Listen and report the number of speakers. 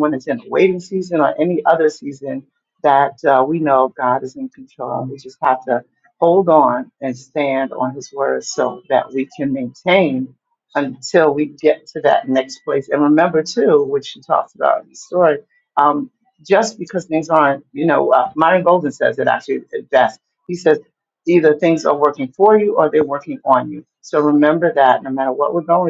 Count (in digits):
1